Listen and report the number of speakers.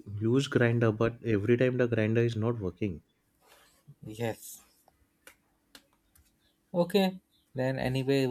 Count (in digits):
2